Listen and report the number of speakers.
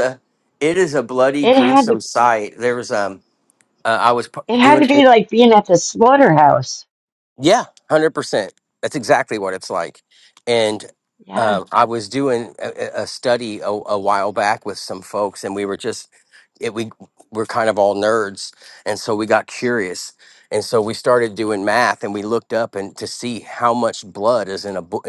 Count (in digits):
2